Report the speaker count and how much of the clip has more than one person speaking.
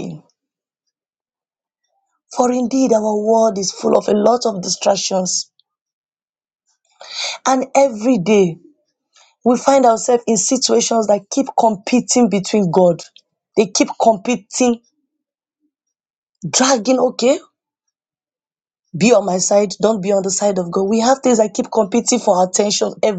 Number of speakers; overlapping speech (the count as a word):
one, no overlap